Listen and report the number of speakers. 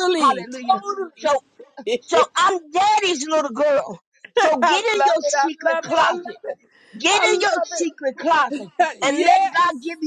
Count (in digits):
2